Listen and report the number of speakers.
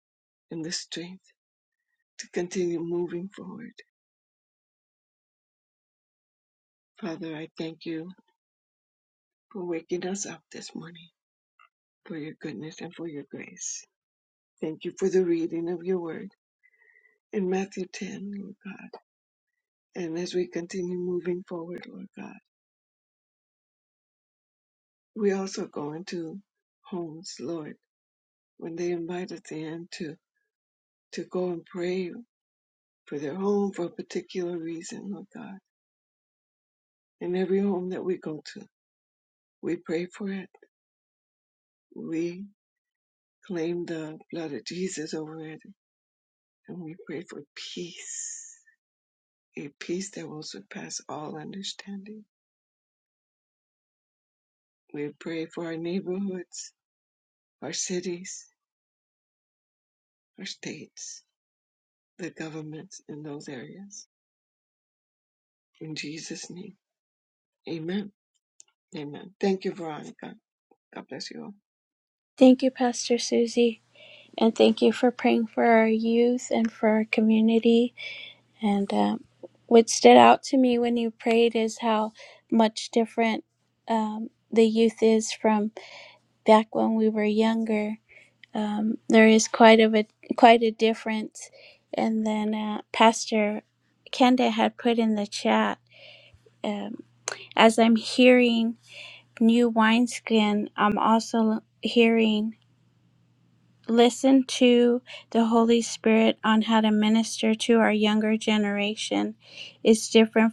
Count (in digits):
2